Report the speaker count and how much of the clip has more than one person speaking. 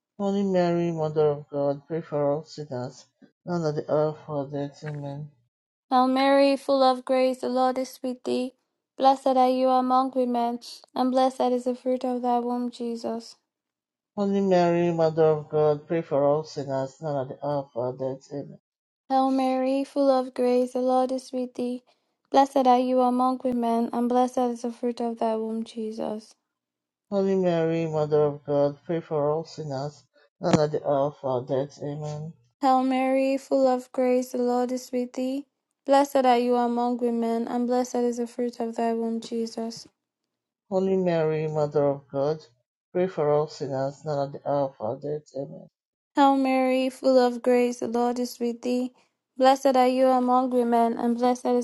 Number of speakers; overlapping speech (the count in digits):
2, no overlap